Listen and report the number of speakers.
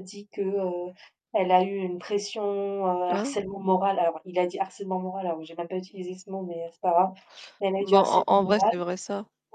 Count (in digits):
2